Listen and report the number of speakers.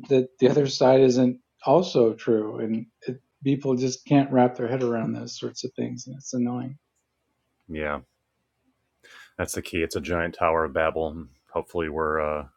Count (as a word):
two